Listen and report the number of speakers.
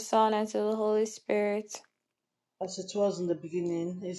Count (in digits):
2